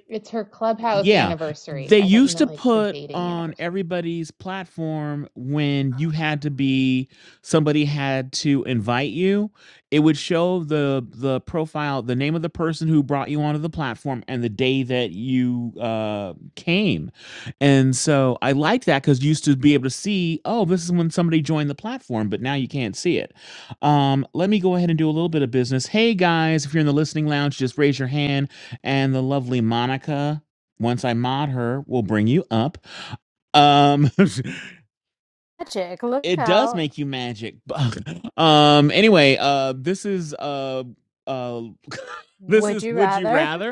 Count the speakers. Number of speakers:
3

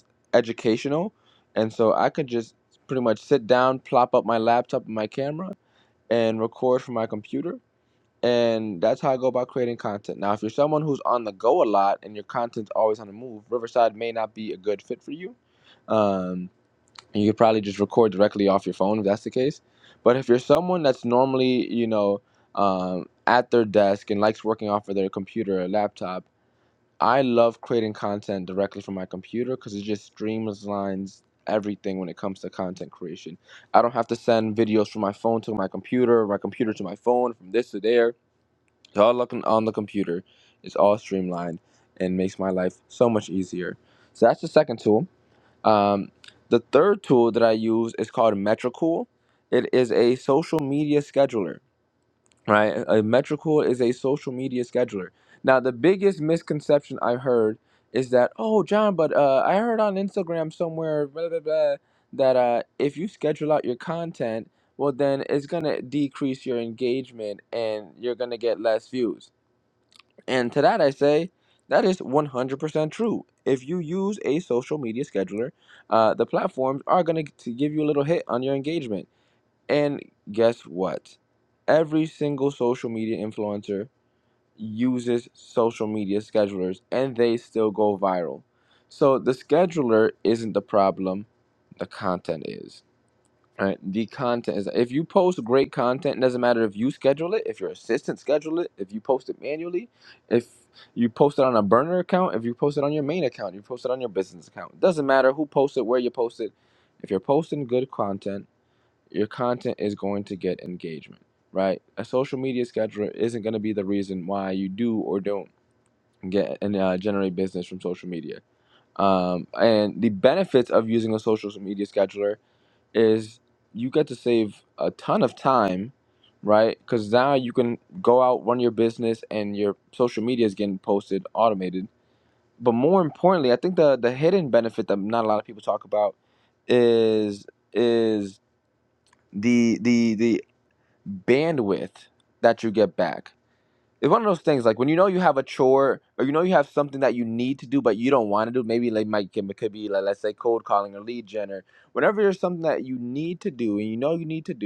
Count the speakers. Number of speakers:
1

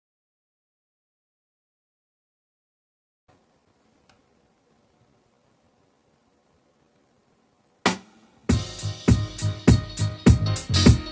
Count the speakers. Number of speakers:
0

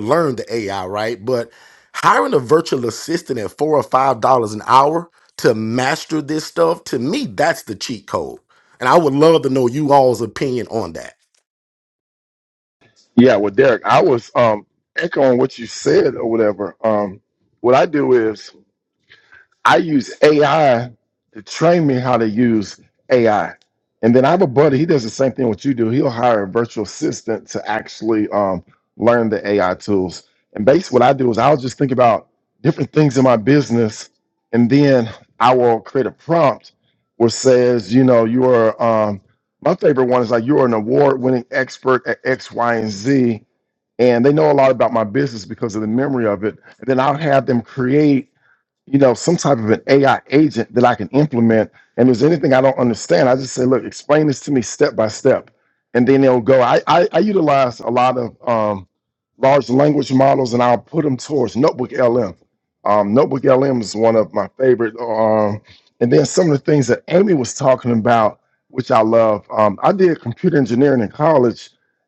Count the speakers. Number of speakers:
2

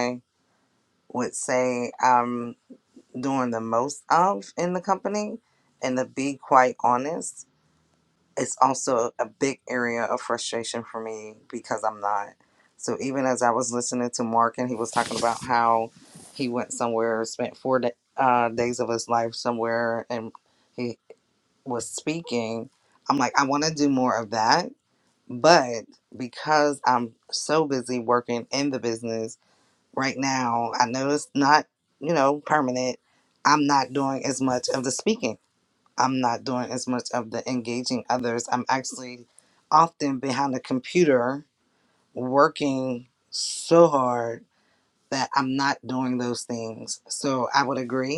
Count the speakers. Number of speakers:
1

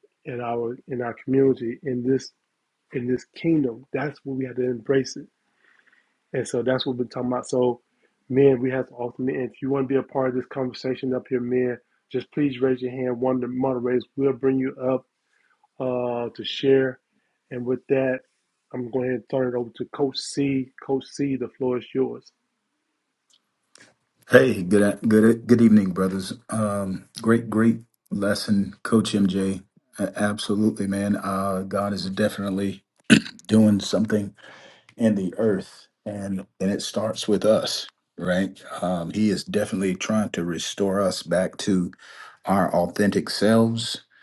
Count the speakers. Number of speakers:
2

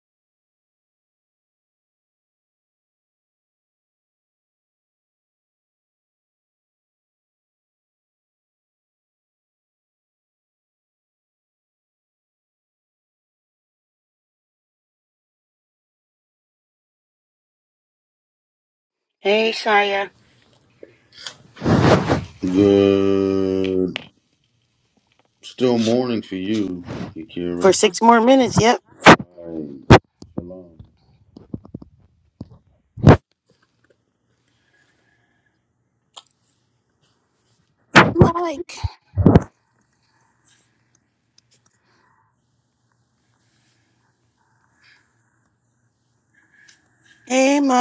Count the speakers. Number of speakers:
2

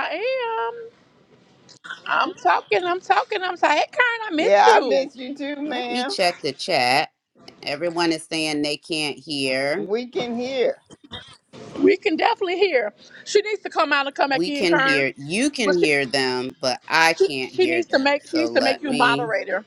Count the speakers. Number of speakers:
3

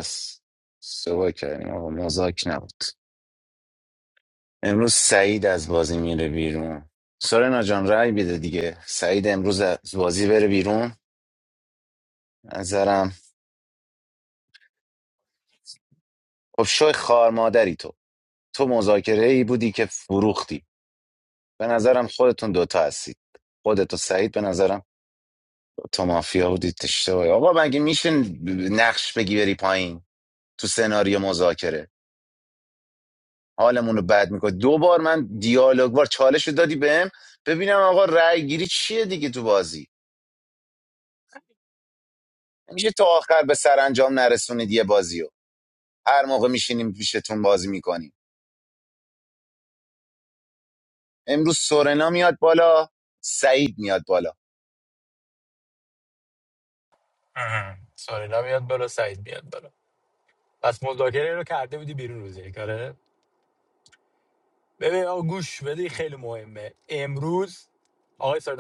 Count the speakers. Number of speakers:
2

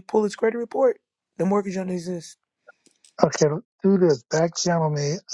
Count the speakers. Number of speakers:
2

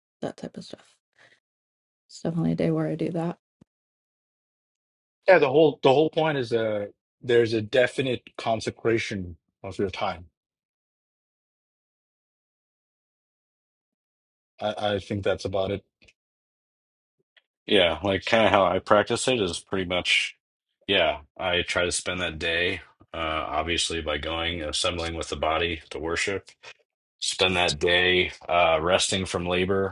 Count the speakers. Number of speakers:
3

